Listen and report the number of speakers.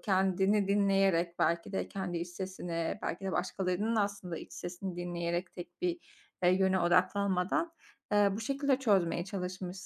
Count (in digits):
1